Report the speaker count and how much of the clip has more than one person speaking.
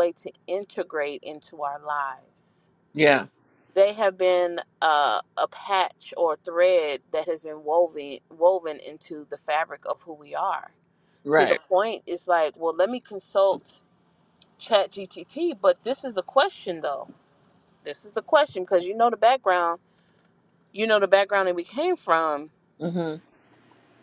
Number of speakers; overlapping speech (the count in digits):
2, about 1%